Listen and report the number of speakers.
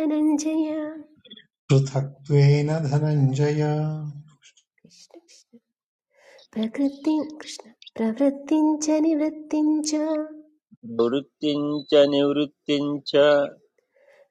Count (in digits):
3